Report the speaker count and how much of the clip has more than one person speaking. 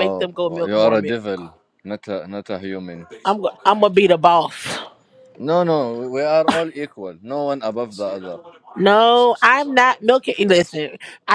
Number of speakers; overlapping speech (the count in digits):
2, about 7%